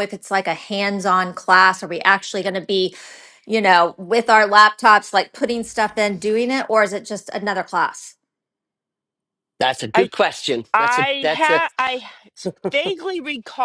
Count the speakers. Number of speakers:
3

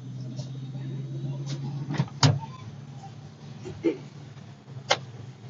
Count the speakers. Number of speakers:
0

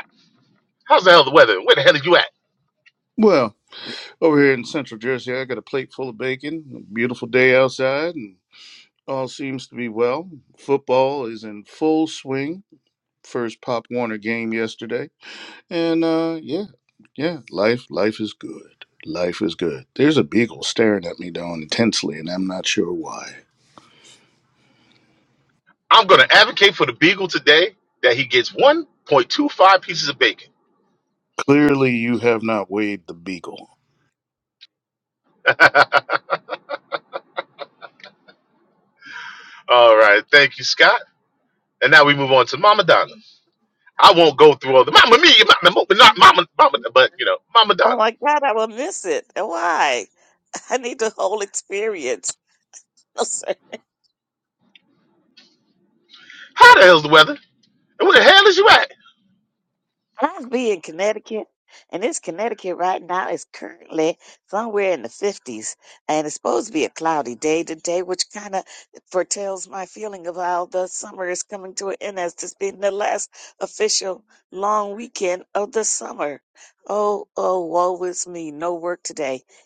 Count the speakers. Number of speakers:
3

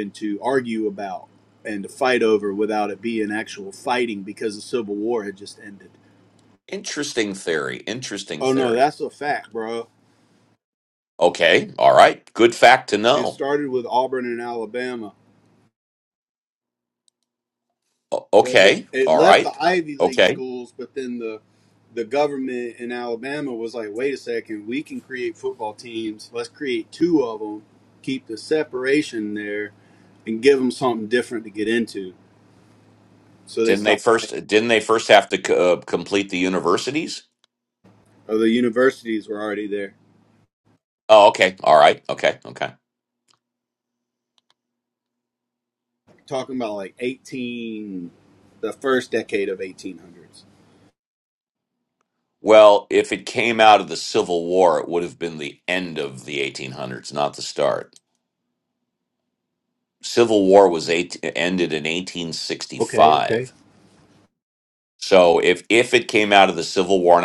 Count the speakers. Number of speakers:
2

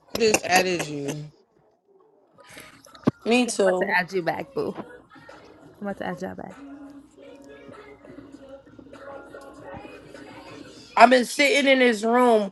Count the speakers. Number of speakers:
3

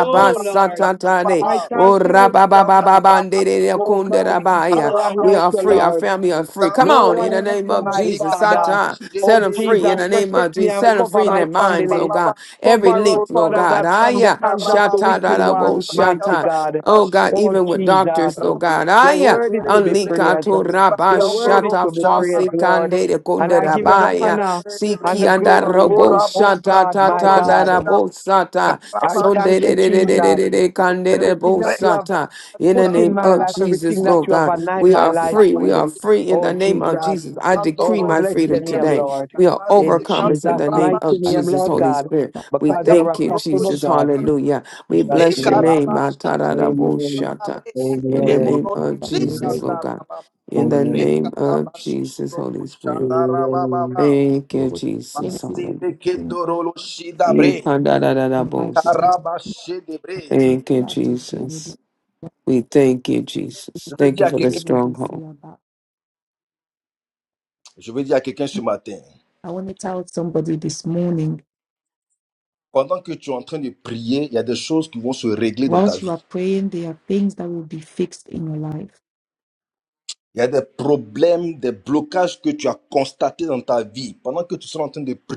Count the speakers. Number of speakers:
4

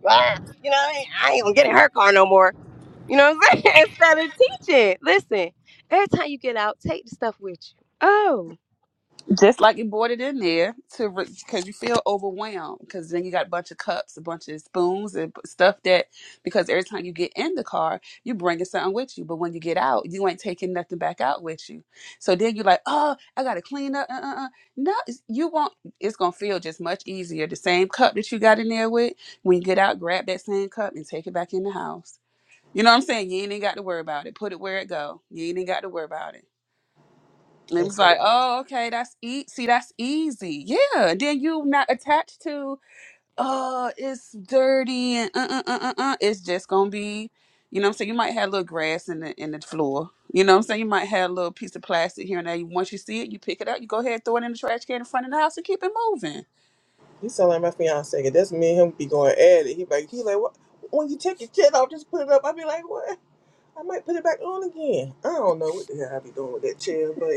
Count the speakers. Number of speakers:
3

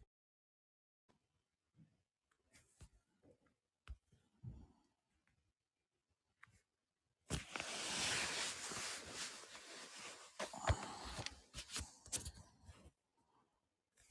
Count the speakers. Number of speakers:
0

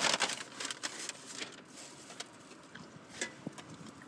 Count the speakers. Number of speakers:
0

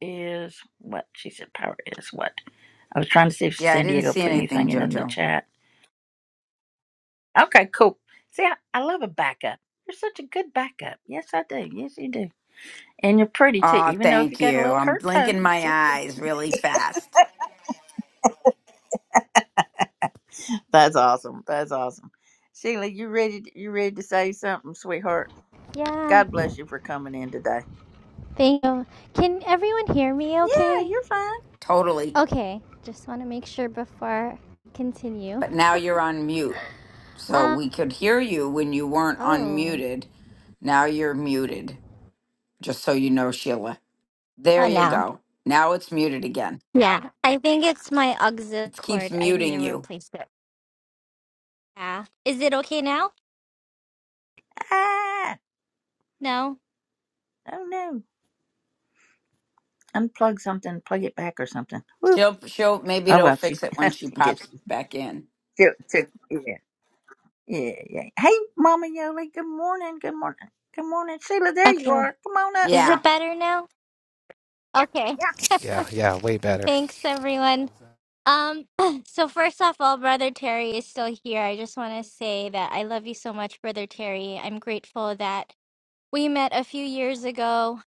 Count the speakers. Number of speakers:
4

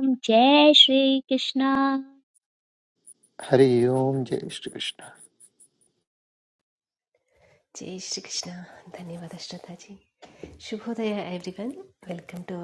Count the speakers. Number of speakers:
3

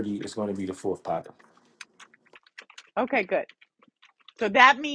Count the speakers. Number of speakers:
2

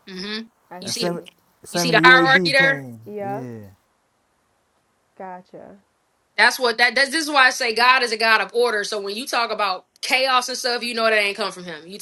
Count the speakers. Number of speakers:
3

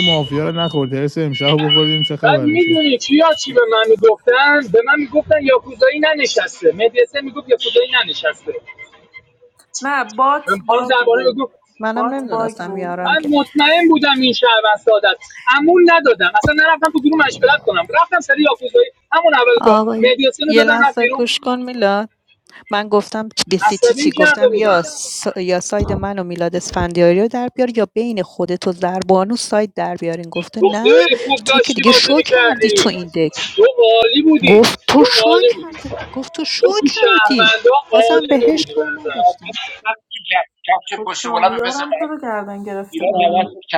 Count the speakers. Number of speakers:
5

